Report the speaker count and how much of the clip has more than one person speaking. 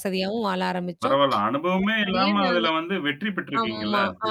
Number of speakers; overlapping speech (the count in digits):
2, about 42%